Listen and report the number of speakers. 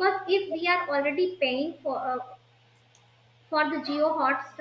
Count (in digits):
1